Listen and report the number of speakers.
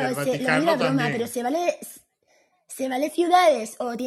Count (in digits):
1